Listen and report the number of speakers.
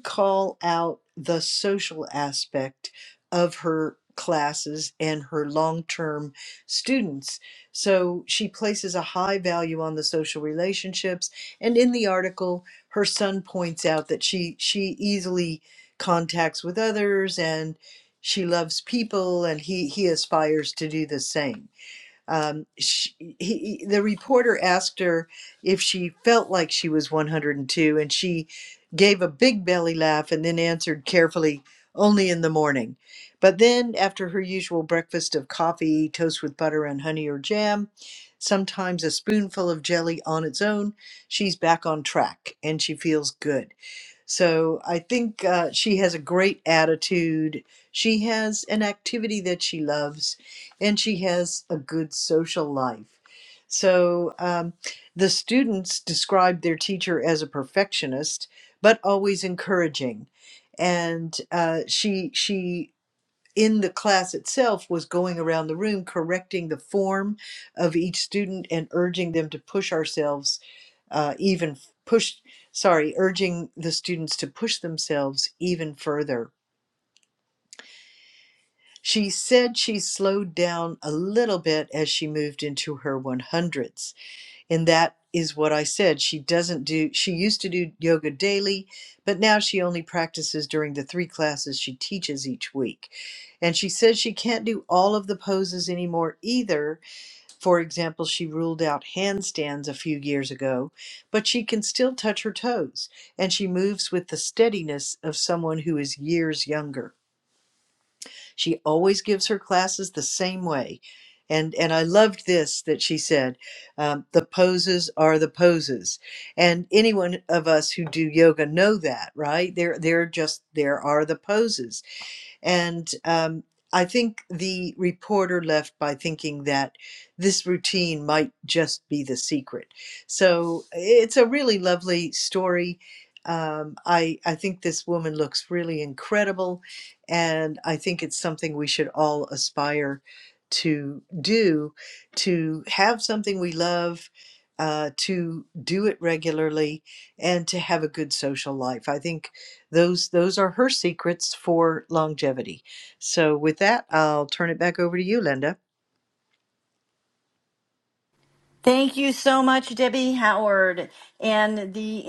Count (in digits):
2